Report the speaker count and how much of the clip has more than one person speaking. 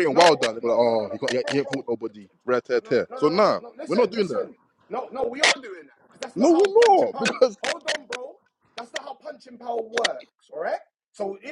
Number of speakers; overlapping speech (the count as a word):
two, about 39%